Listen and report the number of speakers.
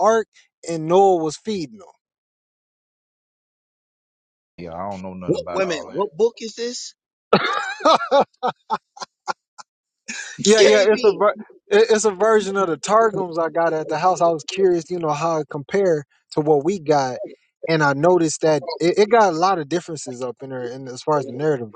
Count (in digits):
3